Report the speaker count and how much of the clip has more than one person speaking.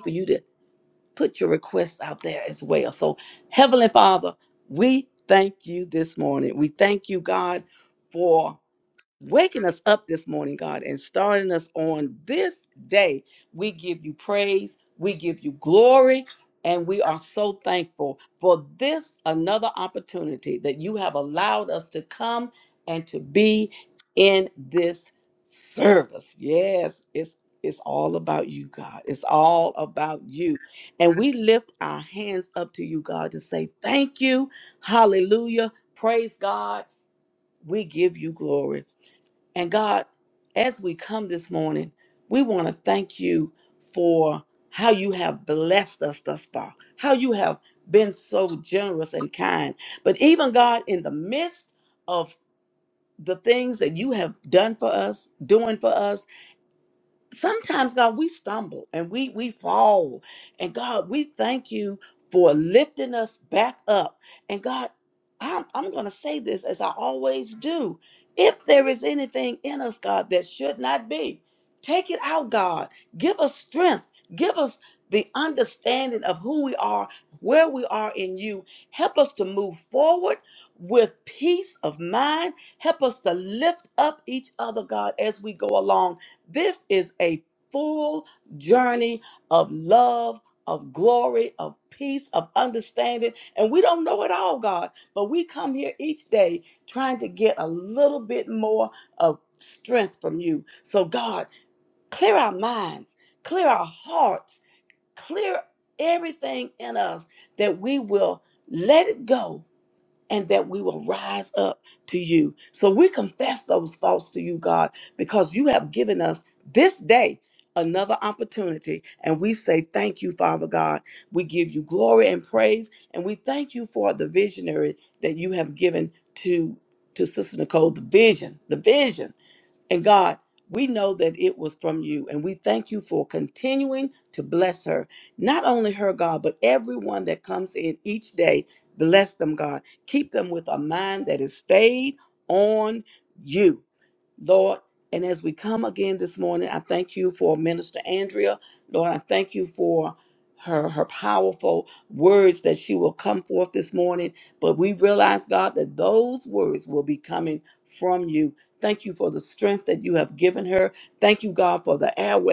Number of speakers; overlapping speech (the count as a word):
one, no overlap